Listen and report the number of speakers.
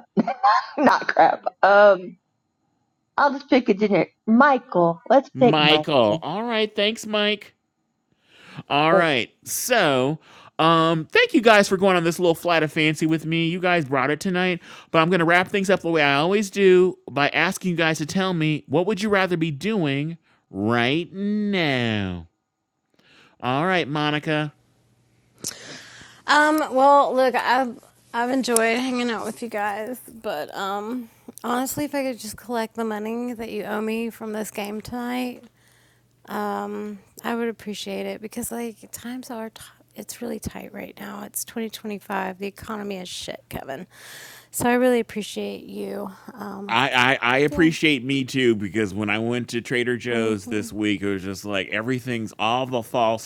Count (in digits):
3